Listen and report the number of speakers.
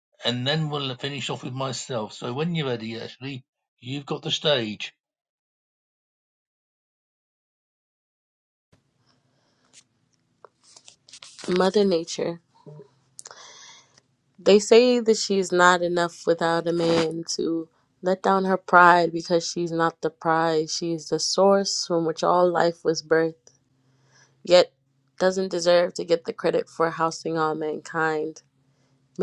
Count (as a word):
two